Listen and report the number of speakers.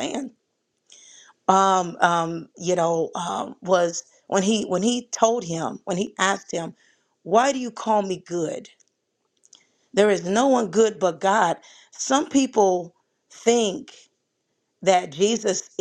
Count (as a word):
one